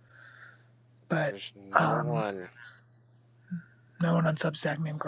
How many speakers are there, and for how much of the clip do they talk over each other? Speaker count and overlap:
two, about 12%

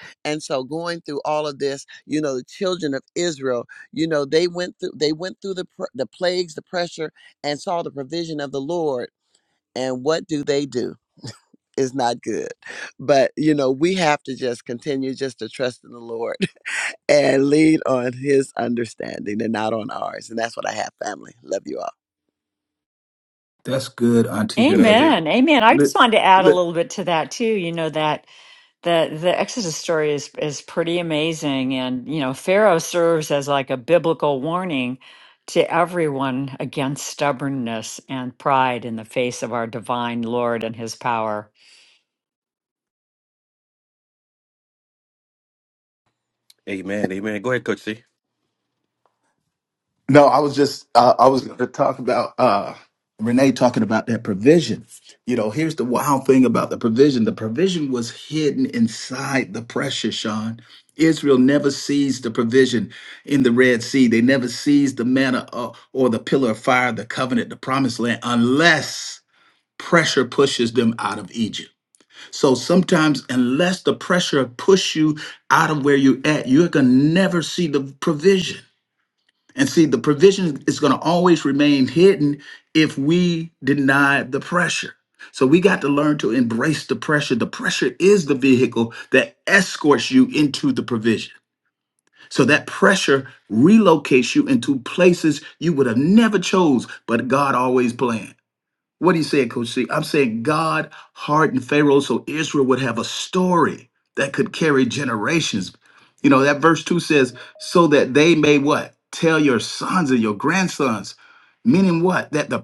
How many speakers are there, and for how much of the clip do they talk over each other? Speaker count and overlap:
four, about 1%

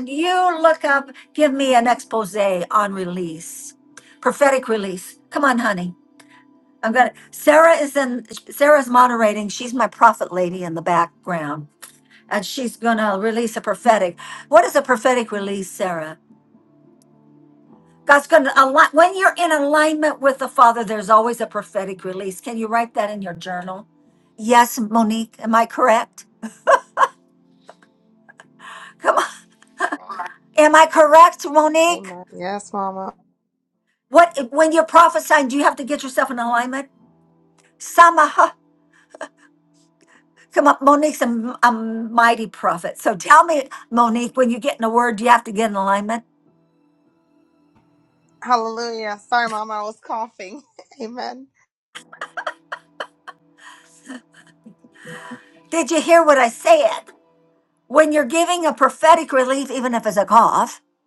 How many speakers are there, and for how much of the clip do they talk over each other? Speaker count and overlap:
two, under 1%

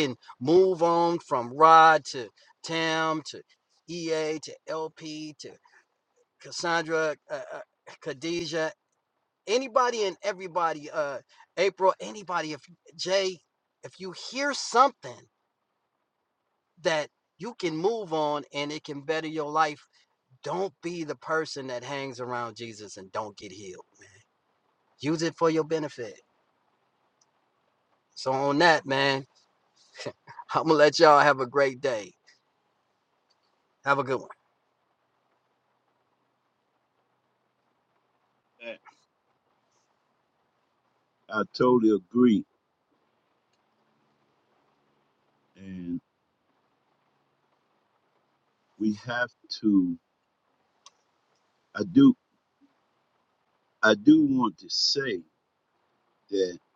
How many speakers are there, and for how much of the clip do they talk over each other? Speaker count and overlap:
two, no overlap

